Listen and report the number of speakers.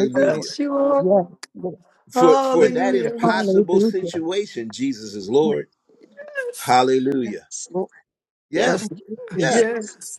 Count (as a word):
three